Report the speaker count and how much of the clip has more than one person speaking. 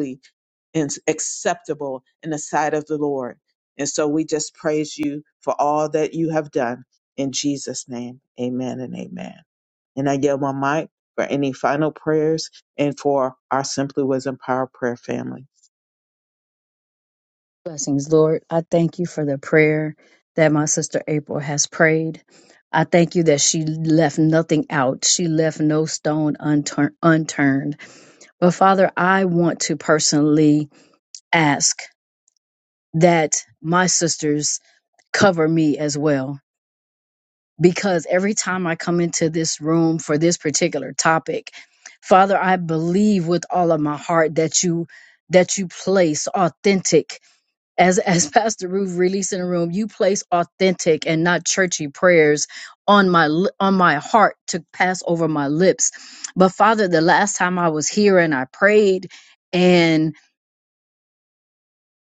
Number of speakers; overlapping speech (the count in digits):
2, no overlap